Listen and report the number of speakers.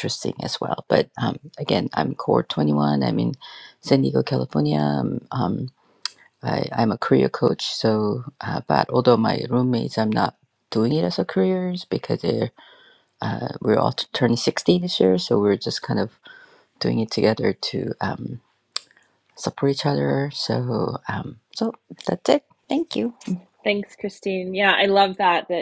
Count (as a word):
two